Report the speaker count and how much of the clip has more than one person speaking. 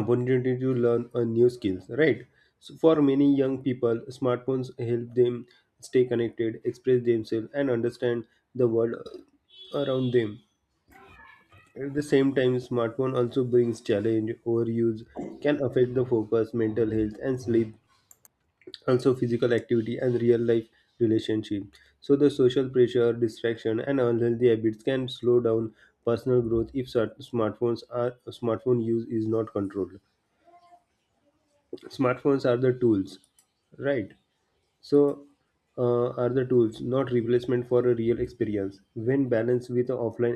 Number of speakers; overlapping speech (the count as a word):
one, no overlap